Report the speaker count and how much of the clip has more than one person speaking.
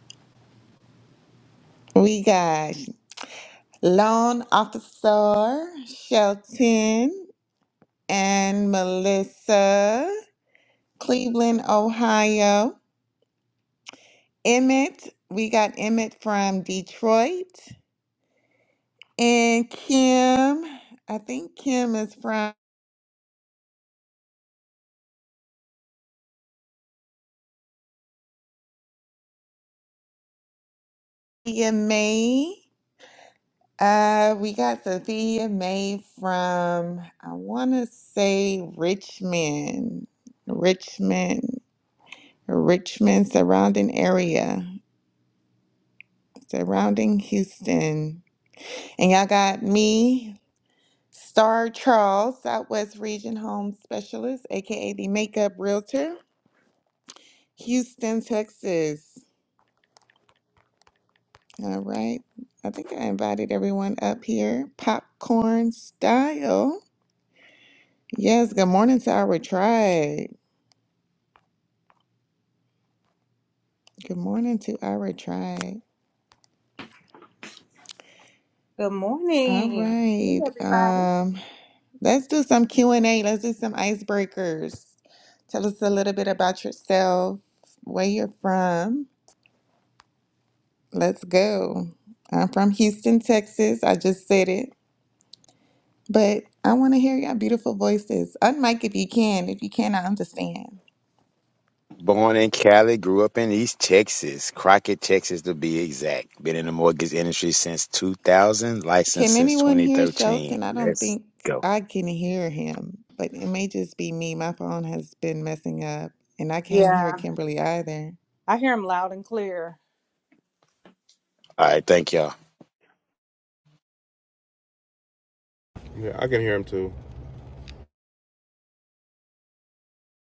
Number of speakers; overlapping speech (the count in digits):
4, about 2%